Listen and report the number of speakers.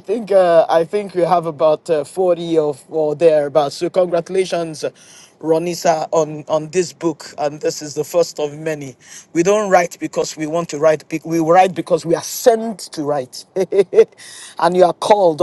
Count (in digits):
1